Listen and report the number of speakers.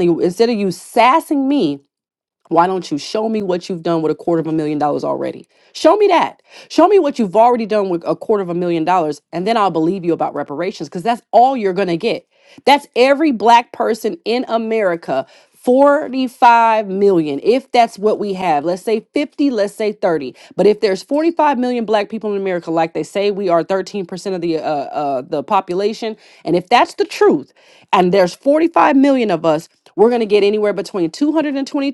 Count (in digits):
1